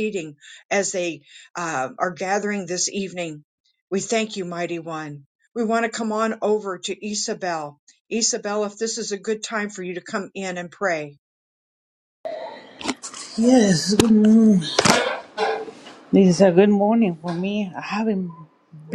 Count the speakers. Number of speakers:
2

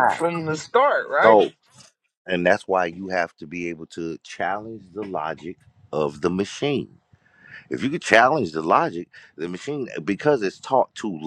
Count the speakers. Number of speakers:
2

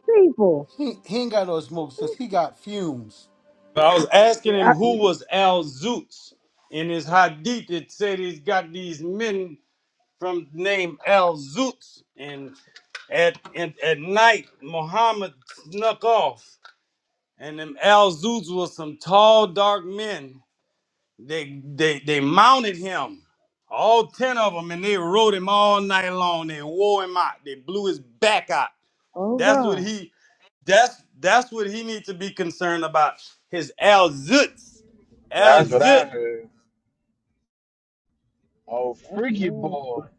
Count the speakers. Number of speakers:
4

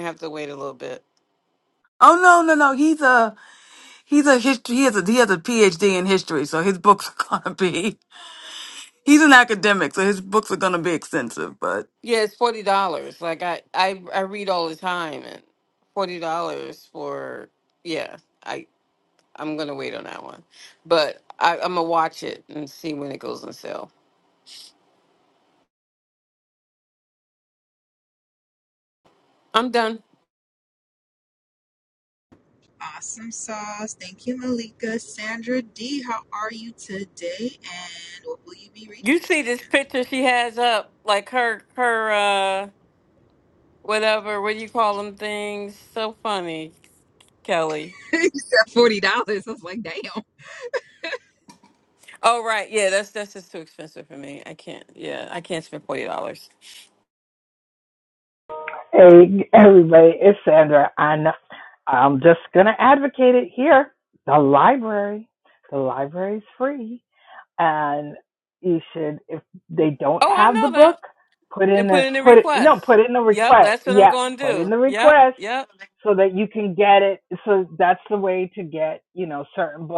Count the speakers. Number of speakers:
4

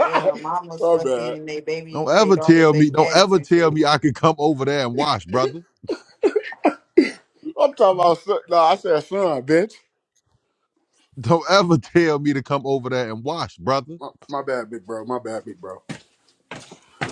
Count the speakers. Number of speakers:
3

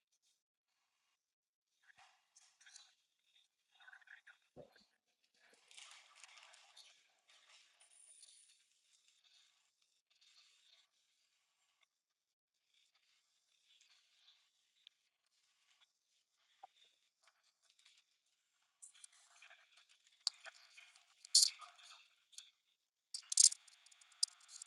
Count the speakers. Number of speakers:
0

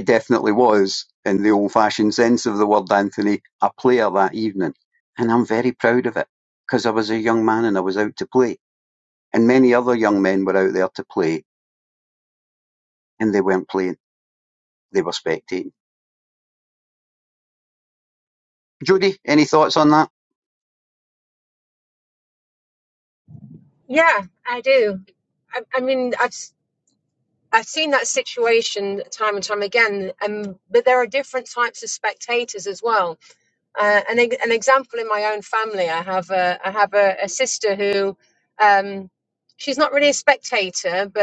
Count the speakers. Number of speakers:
2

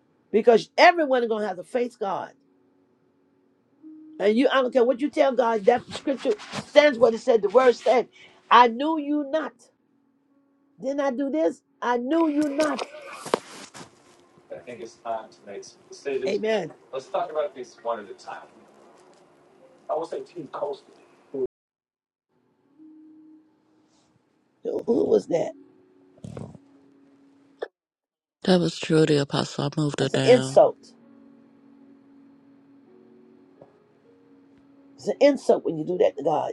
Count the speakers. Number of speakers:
3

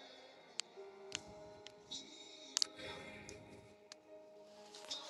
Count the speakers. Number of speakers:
0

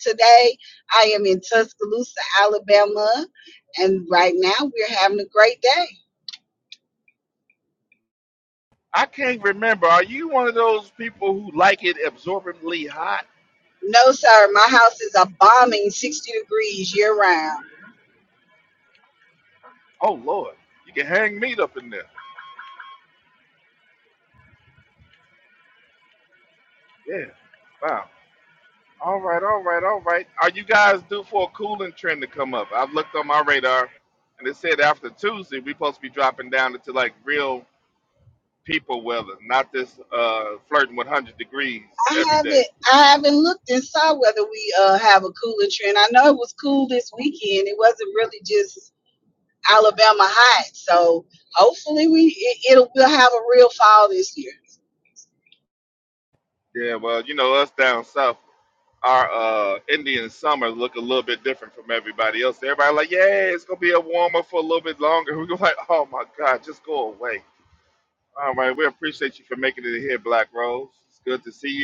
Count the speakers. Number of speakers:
2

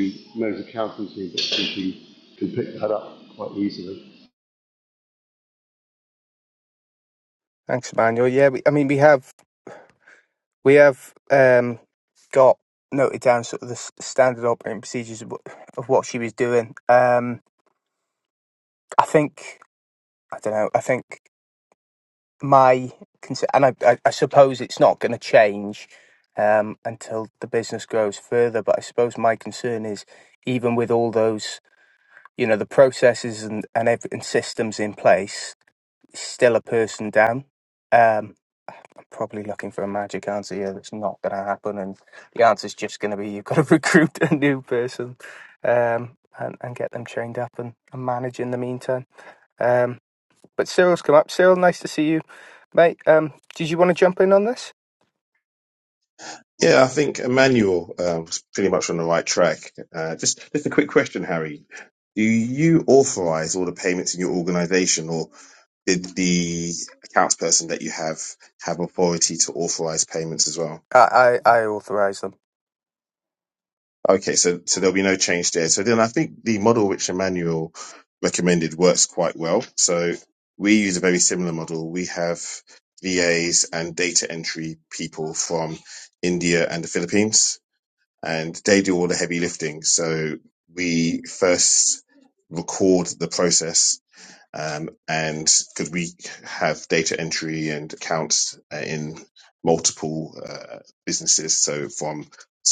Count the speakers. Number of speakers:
3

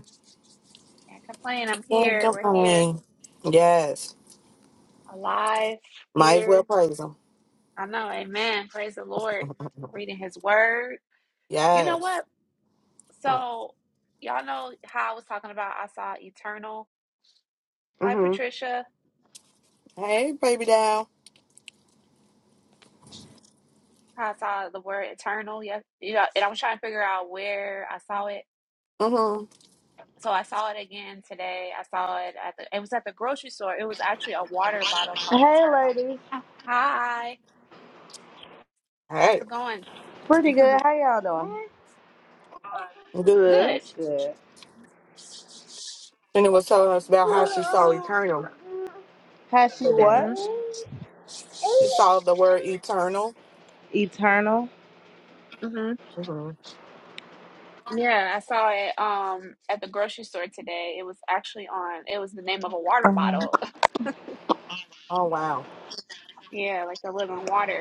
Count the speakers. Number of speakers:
3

